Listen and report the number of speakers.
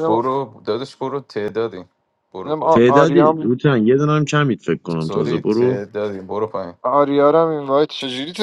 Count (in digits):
3